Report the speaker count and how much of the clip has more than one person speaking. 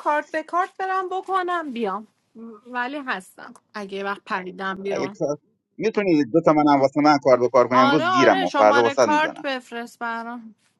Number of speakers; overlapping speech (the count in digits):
2, about 18%